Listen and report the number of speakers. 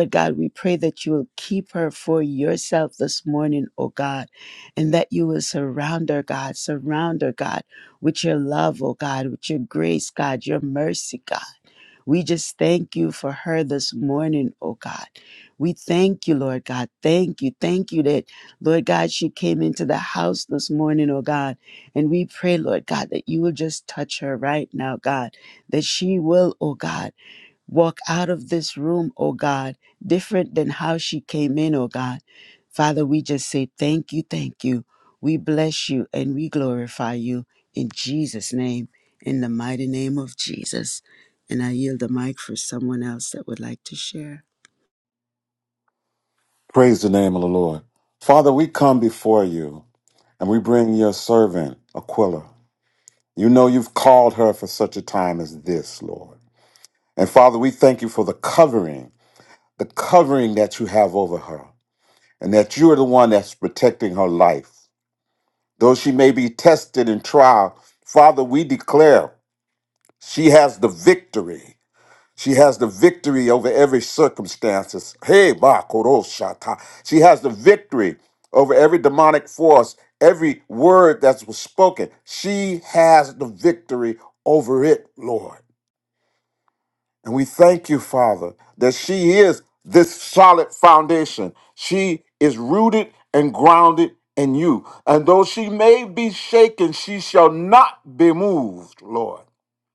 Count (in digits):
2